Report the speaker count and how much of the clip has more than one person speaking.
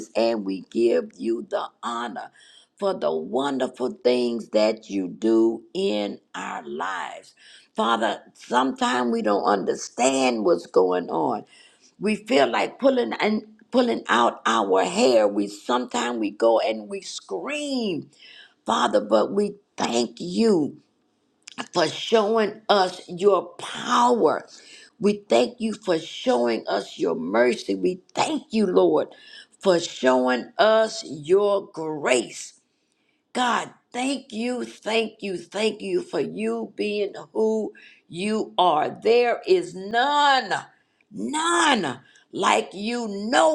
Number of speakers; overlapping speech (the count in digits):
1, no overlap